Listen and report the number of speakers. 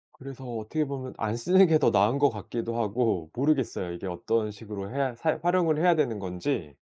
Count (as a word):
one